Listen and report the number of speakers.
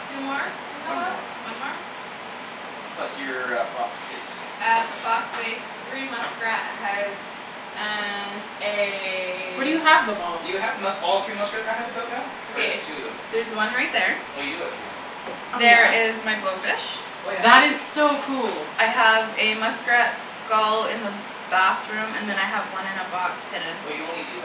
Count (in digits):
3